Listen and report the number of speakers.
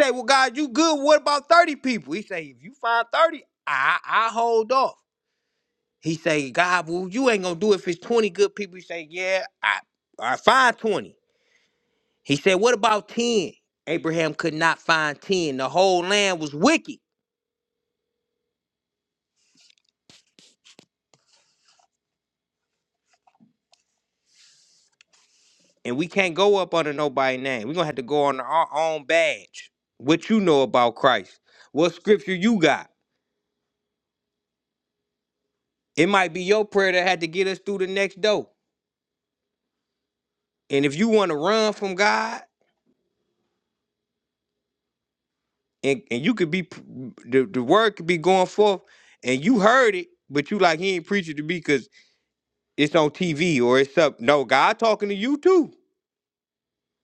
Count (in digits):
1